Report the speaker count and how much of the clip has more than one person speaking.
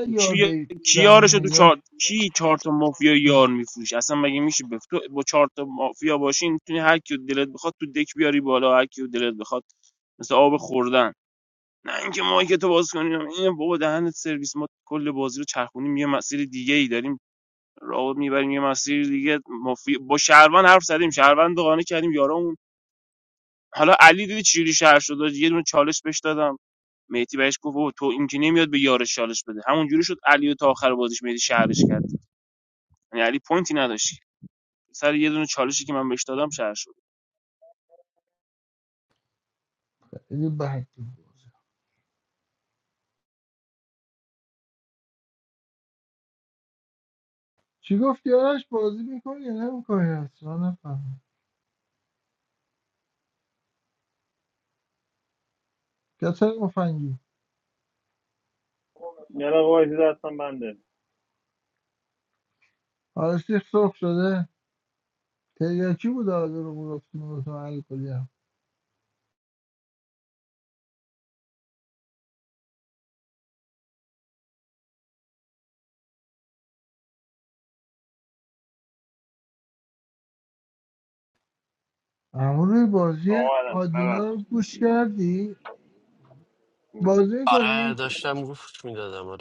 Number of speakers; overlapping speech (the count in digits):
4, about 3%